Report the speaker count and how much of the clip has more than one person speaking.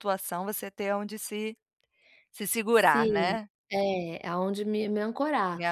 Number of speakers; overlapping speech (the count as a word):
two, about 9%